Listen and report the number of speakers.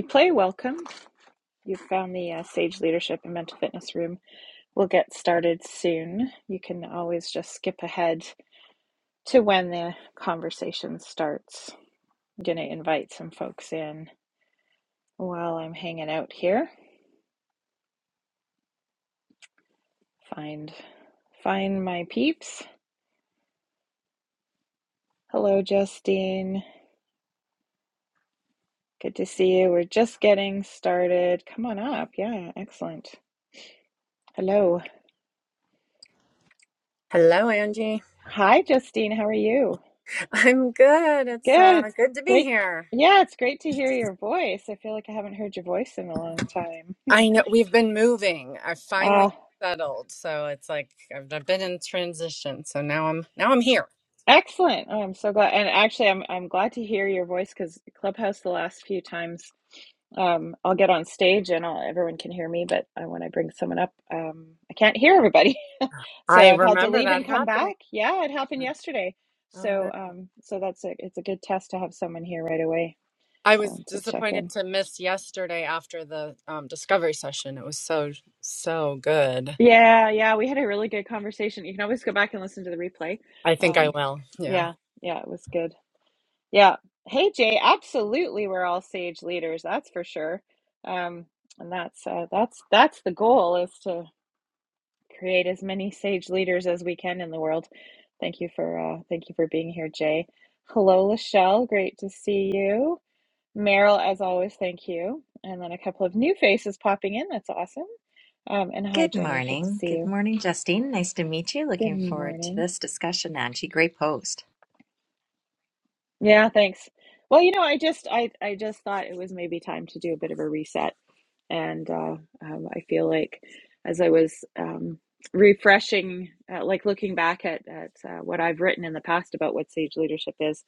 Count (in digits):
3